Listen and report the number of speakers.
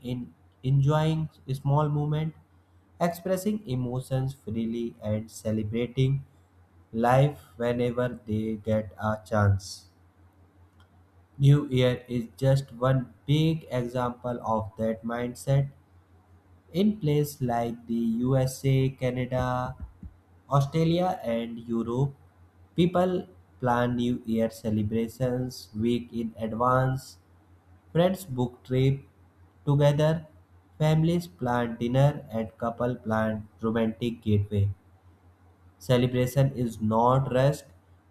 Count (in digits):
1